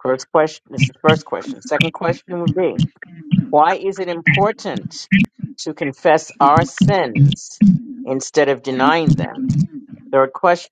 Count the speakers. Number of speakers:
1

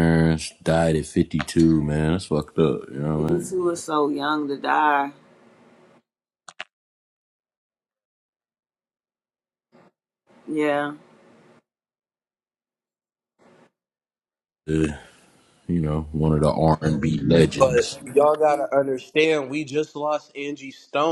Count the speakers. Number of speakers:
3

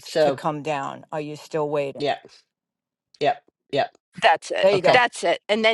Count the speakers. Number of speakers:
3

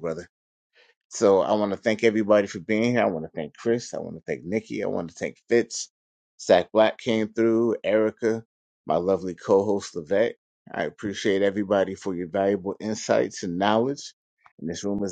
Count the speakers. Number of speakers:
1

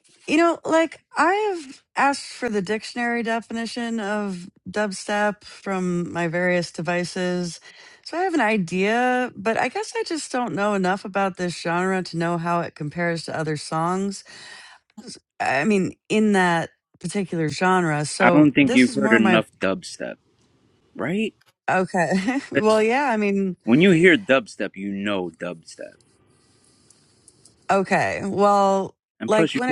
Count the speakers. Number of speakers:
2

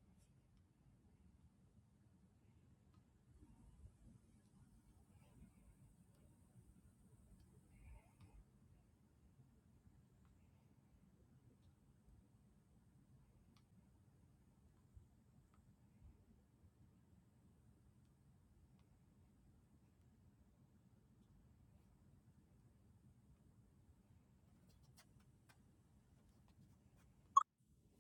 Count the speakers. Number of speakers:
0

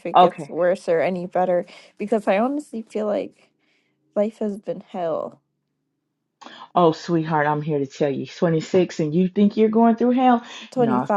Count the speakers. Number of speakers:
2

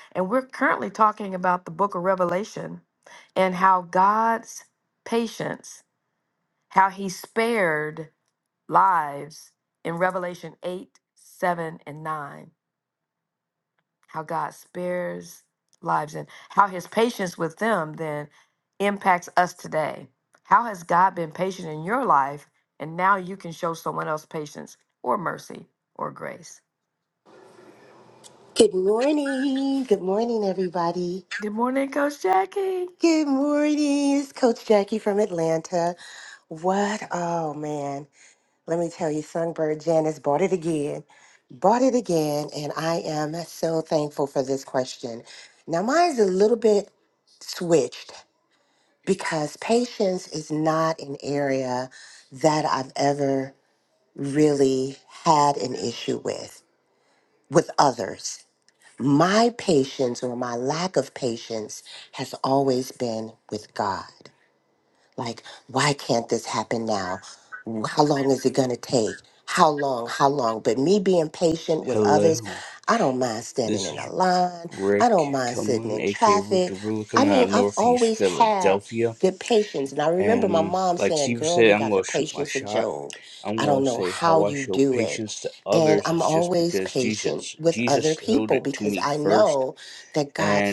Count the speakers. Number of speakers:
3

